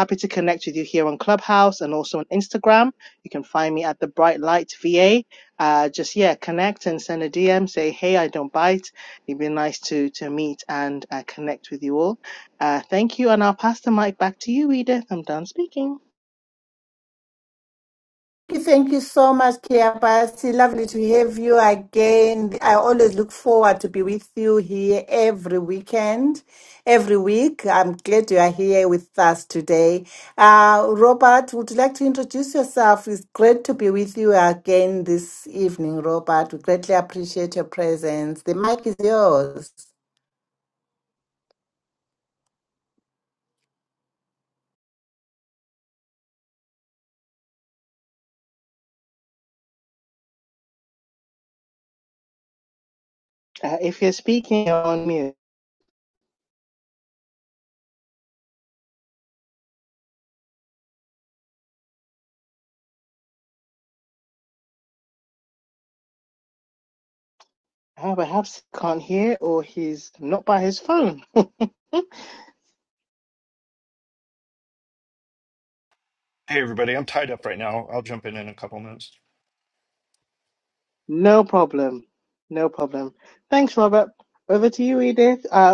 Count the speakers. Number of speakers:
3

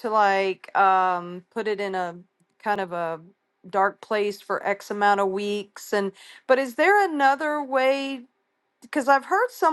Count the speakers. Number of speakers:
1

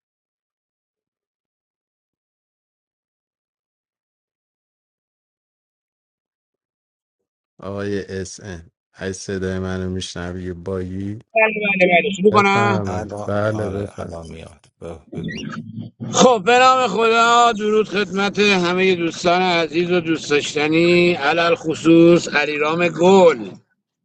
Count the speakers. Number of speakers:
3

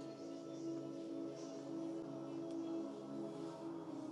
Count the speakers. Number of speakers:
0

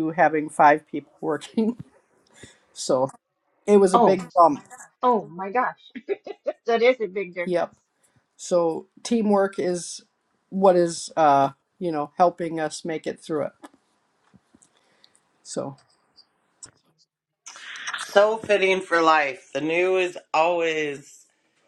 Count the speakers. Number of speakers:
3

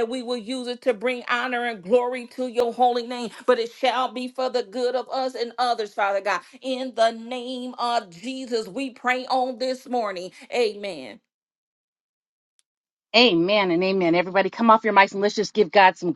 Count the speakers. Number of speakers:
2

